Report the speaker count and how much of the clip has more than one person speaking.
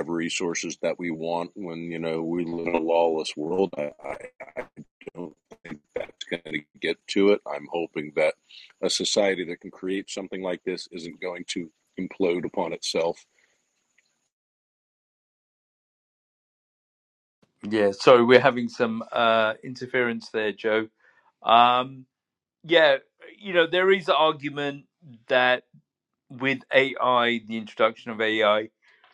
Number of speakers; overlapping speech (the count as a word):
two, no overlap